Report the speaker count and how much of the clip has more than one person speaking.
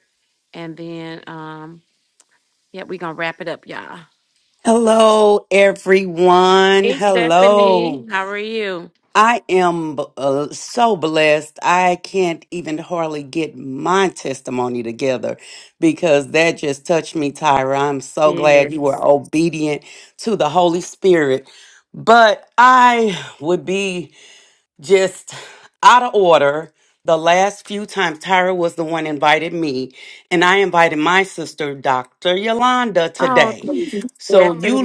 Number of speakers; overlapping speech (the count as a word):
two, about 5%